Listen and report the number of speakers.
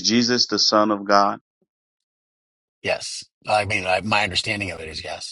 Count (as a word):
two